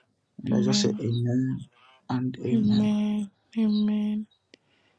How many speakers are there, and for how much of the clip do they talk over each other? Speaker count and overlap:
2, about 19%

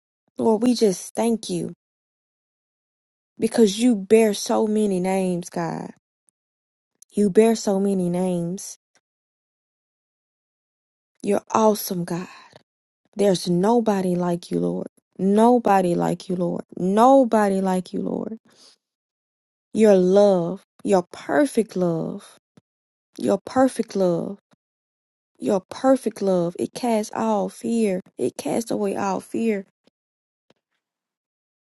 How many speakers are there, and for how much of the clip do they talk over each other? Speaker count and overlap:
1, no overlap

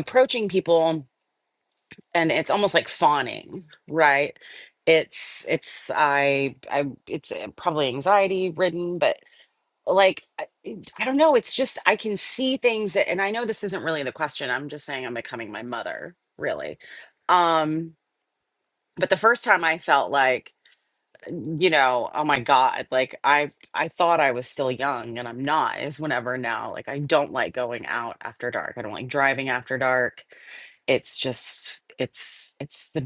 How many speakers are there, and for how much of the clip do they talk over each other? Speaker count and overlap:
1, no overlap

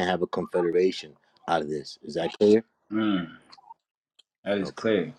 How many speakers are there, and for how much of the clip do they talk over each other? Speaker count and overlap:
2, about 7%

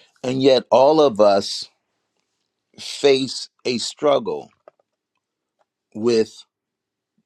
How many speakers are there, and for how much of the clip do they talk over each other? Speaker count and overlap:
1, no overlap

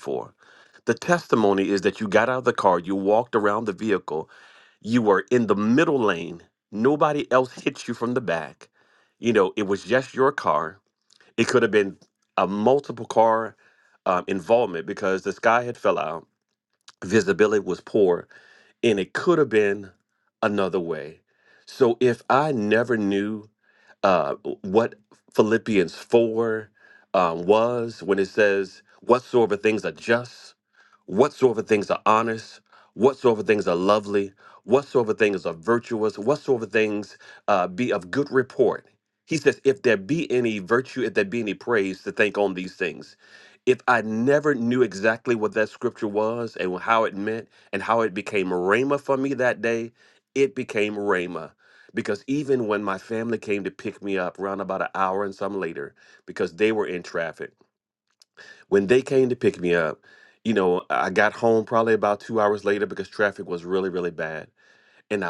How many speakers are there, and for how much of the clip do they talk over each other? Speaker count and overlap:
1, no overlap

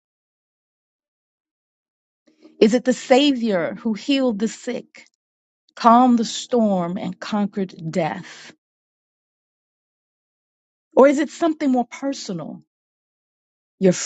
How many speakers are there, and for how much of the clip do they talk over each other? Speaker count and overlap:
1, no overlap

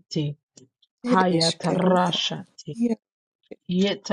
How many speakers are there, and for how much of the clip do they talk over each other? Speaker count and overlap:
2, about 26%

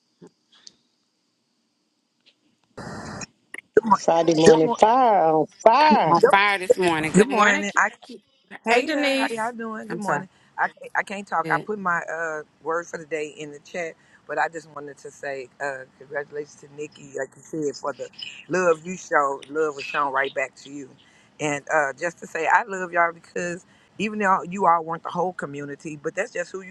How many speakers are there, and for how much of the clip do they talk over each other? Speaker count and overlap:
3, about 11%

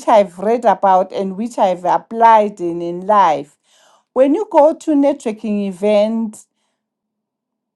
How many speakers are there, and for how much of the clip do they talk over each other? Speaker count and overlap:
1, no overlap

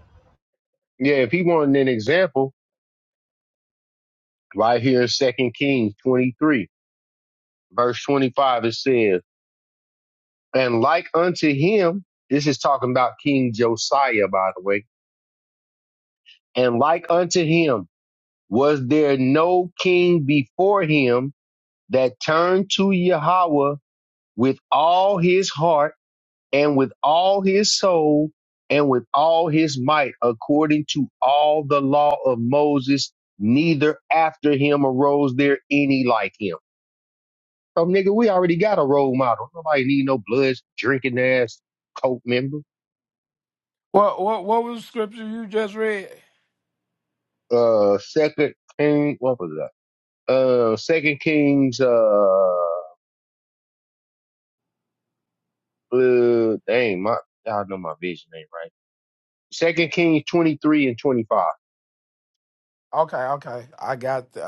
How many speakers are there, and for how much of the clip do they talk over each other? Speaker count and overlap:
2, no overlap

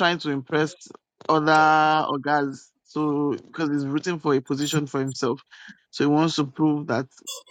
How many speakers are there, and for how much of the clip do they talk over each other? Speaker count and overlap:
1, no overlap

